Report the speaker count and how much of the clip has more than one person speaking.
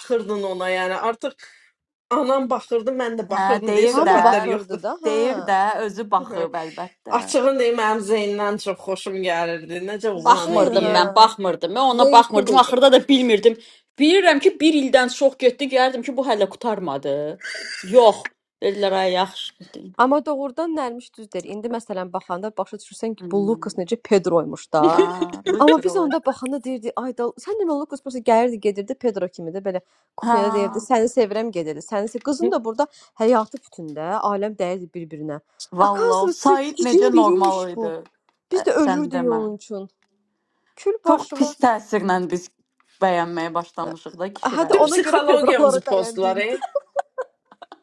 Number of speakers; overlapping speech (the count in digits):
4, about 22%